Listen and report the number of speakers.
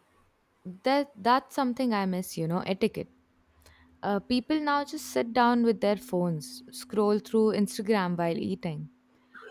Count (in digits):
1